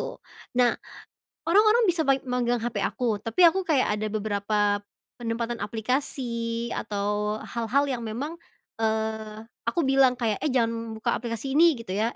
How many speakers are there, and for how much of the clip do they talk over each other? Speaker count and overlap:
1, no overlap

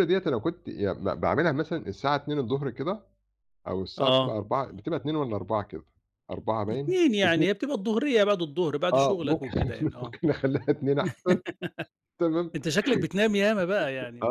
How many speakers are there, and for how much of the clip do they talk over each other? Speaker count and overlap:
2, about 12%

